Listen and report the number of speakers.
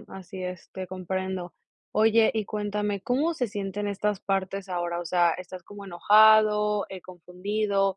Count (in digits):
1